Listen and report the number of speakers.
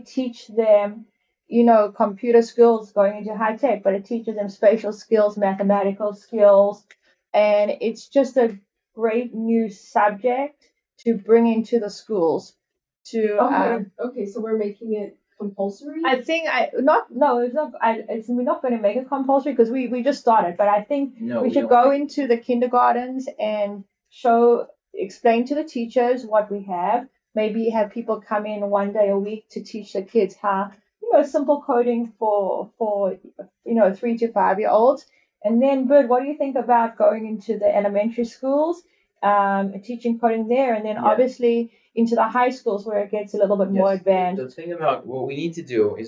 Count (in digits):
3